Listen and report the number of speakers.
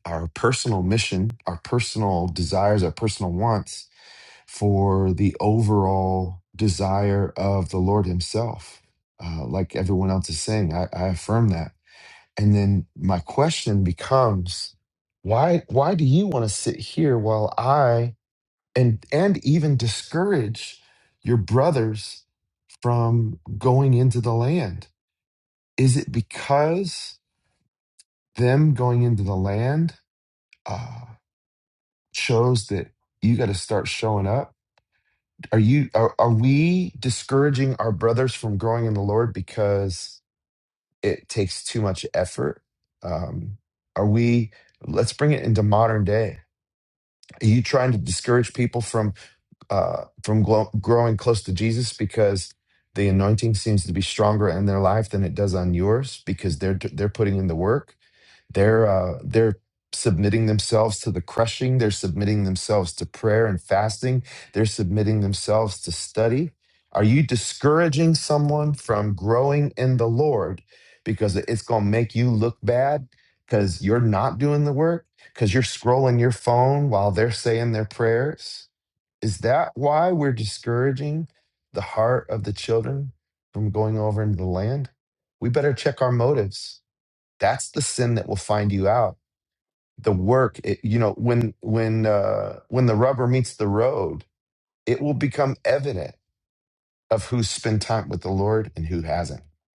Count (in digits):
1